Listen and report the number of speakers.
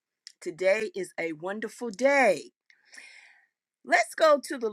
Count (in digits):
1